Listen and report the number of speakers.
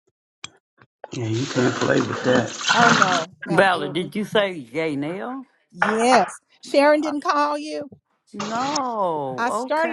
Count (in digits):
3